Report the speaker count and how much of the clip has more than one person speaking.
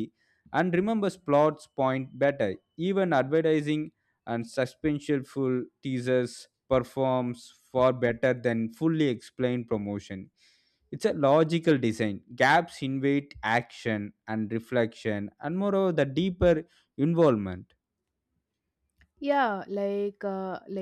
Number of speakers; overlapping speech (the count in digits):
2, no overlap